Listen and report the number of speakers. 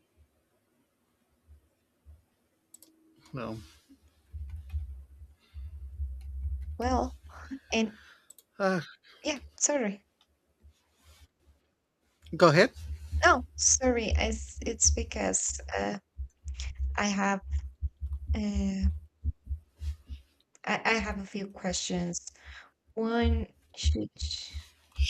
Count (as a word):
two